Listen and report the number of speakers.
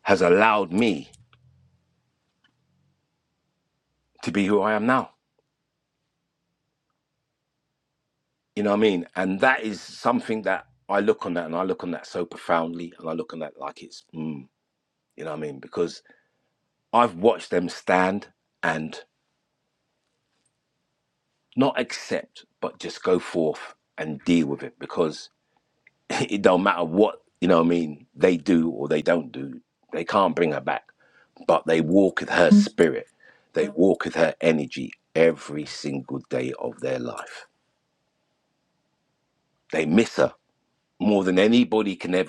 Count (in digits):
1